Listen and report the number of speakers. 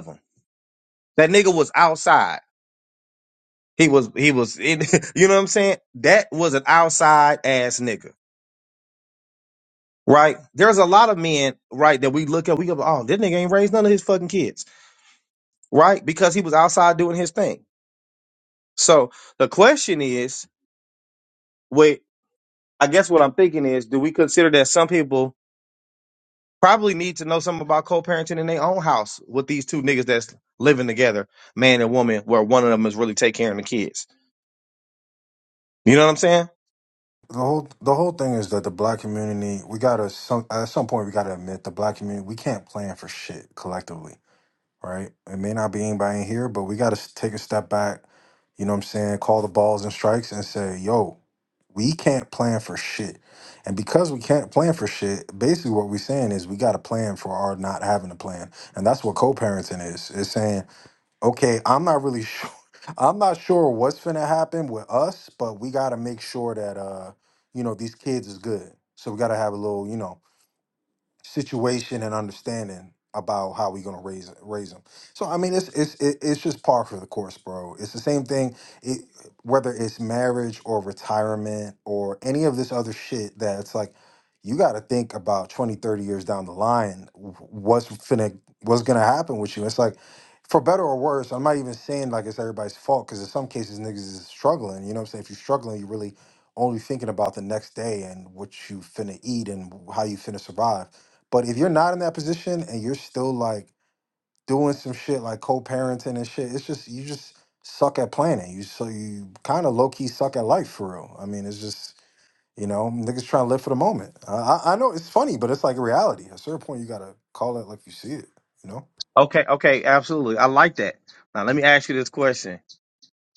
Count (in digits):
2